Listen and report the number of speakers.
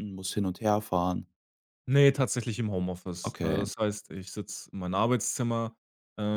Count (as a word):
two